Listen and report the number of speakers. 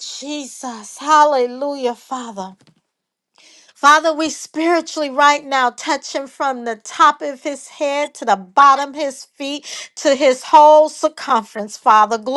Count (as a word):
one